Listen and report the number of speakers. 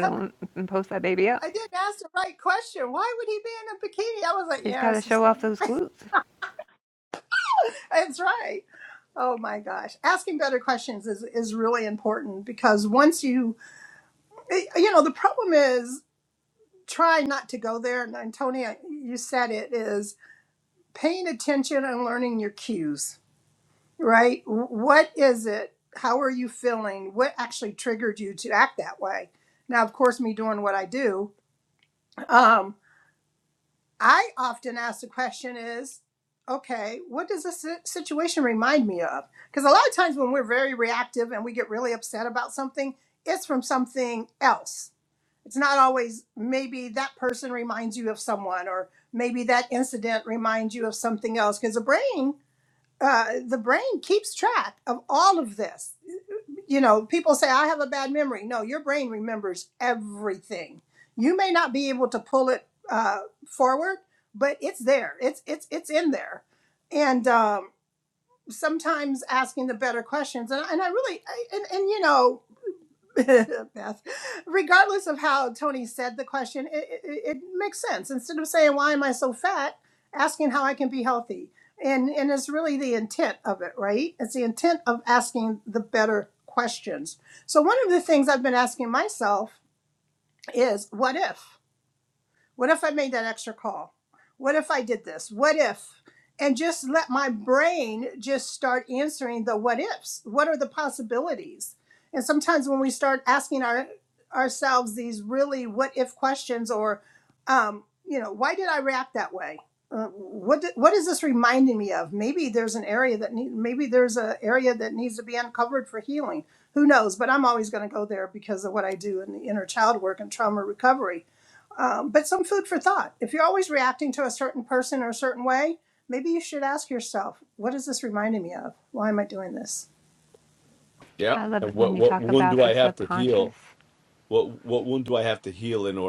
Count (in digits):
3